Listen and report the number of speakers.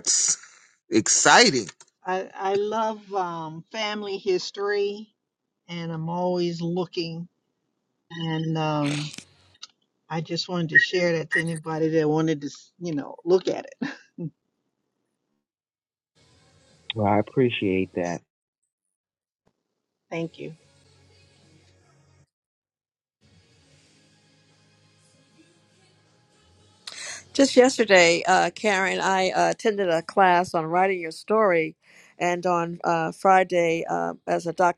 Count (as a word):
three